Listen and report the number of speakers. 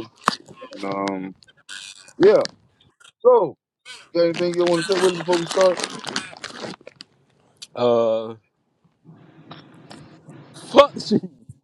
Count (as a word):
two